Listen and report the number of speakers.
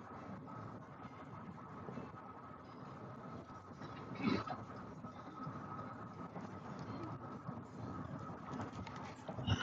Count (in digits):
0